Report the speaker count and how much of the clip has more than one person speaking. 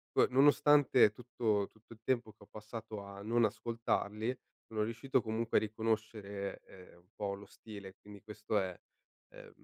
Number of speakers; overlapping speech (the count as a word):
one, no overlap